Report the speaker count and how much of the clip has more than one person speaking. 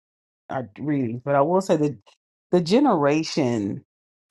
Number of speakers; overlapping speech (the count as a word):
one, no overlap